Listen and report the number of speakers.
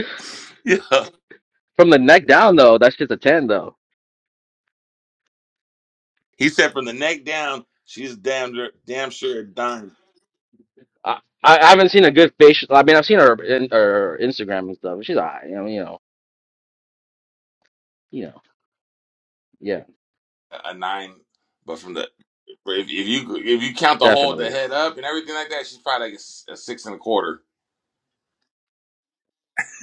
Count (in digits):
2